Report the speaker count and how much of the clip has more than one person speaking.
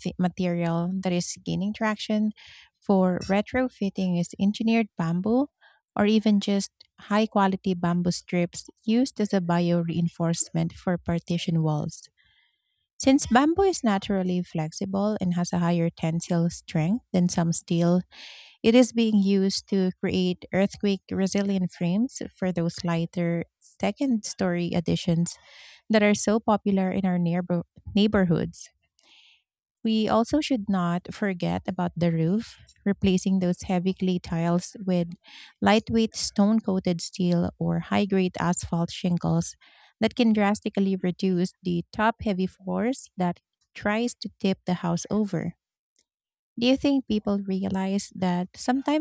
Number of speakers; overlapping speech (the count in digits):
1, no overlap